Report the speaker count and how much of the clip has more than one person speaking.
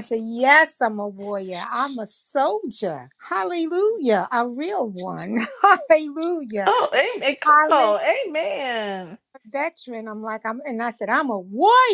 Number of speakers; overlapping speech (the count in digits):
2, about 5%